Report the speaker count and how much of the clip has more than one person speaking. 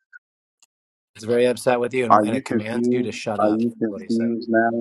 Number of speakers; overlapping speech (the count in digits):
2, about 39%